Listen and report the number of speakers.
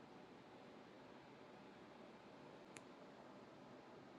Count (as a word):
zero